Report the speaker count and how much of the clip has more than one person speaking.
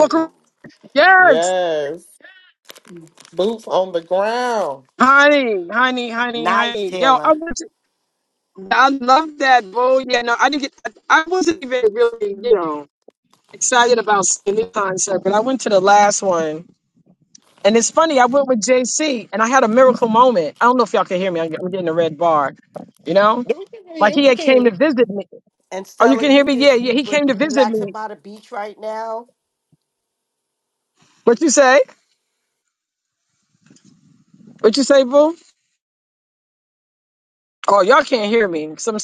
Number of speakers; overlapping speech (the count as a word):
three, about 10%